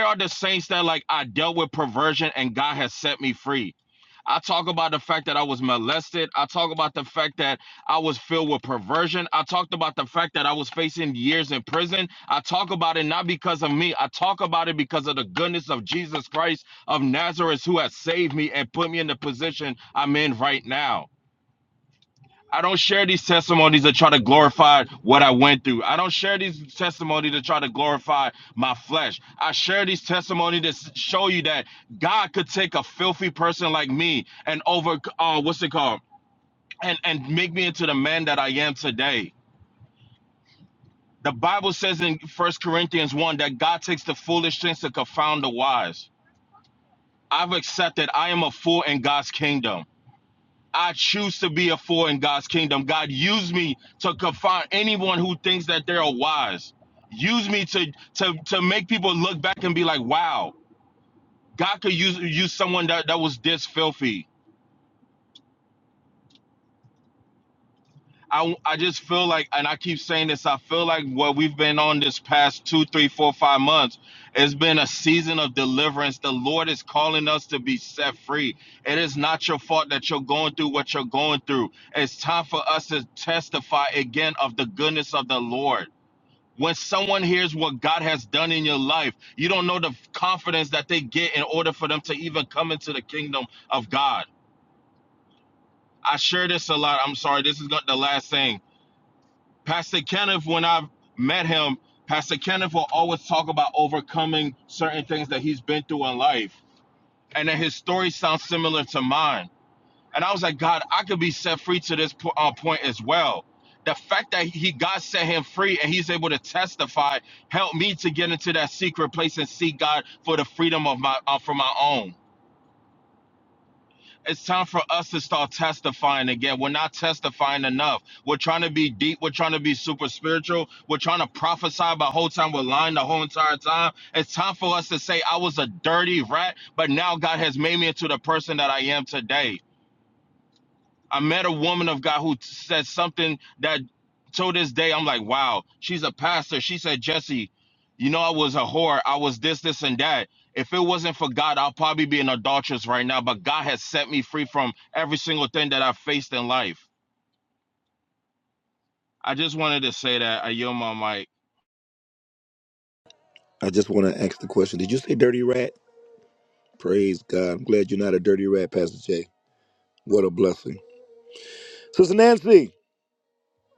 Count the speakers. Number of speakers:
2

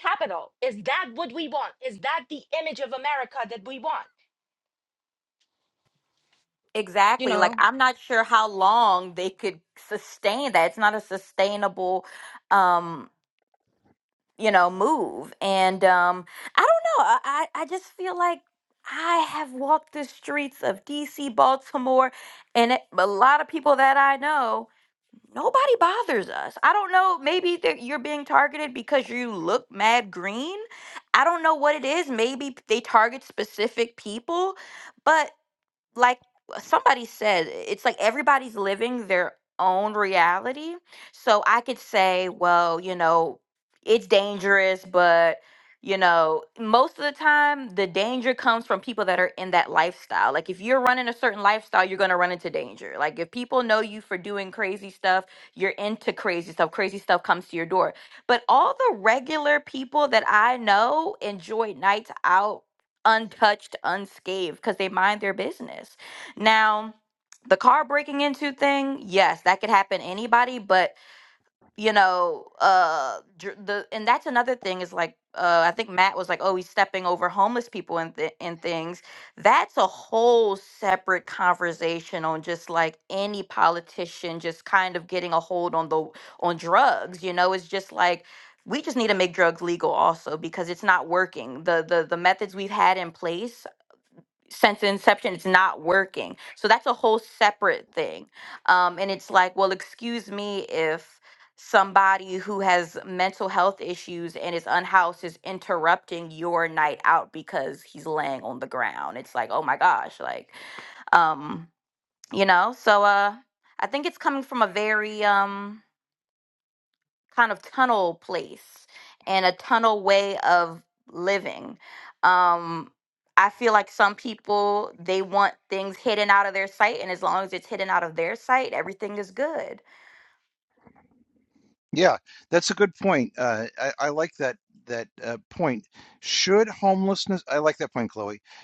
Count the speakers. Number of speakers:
3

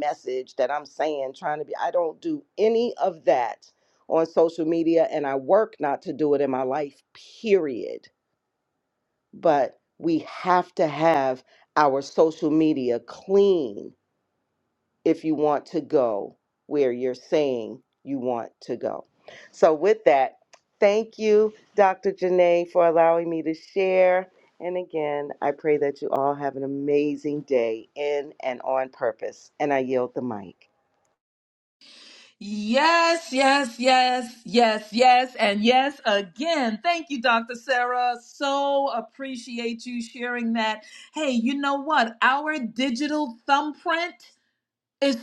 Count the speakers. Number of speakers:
2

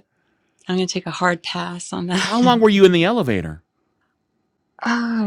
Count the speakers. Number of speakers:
2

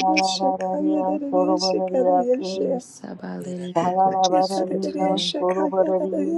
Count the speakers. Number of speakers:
3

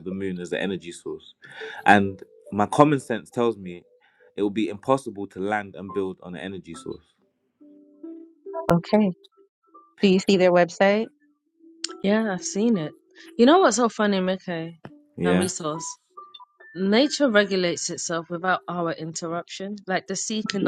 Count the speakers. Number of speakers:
3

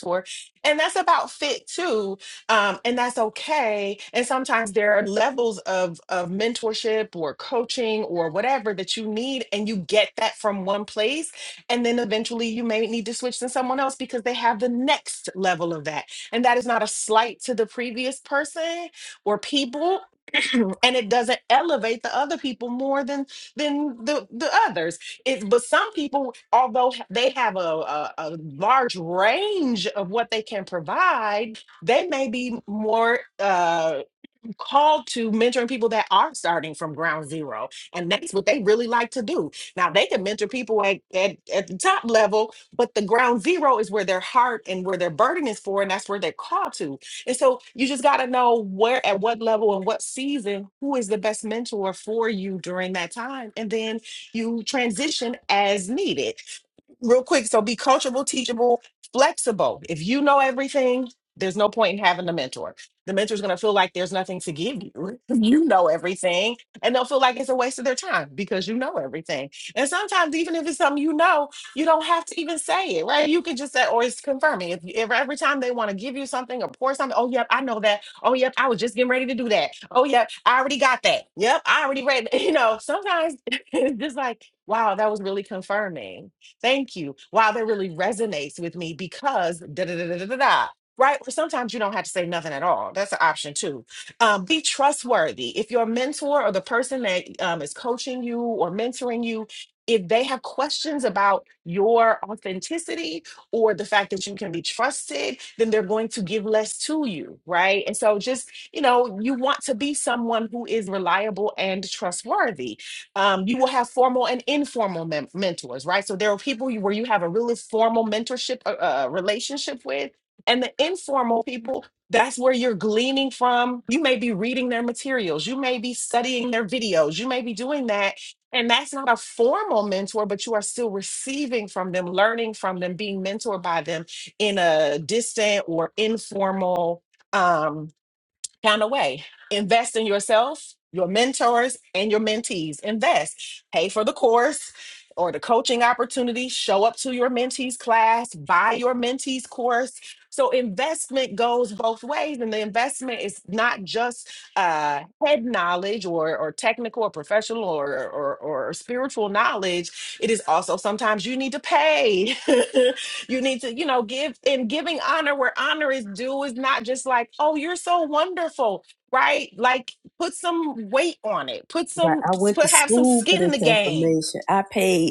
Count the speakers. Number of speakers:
2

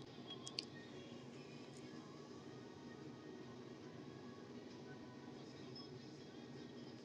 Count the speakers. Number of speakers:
0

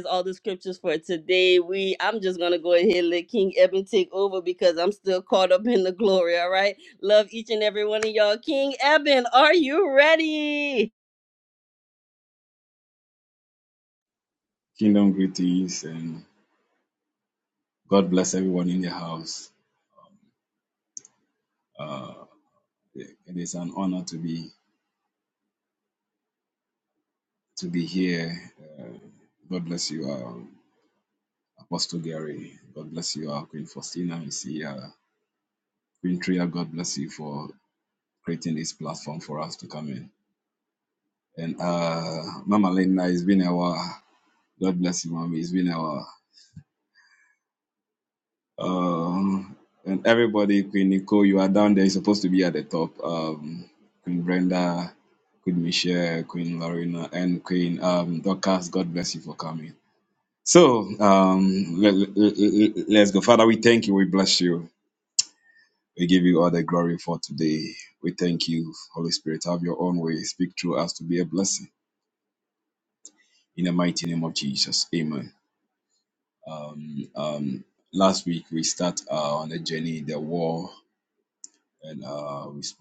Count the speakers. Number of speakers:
2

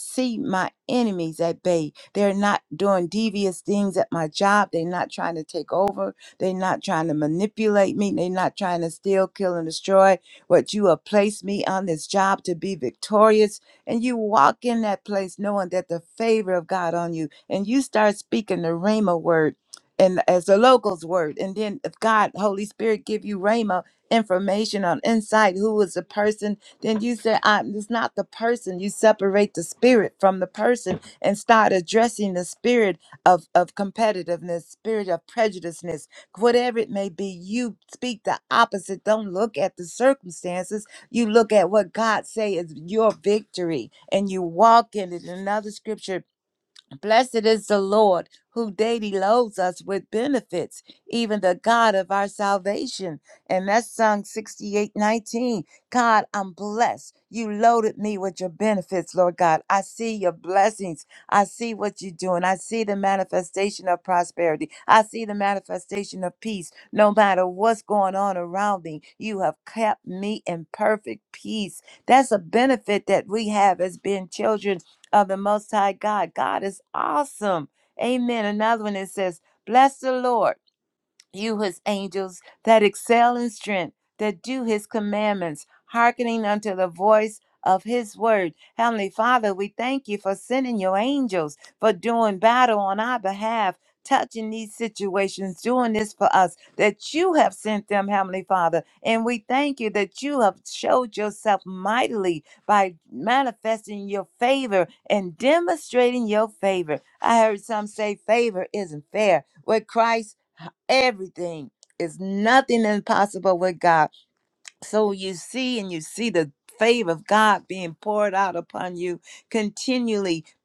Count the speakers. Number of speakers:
1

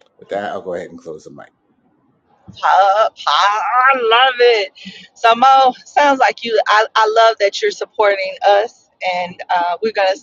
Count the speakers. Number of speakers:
2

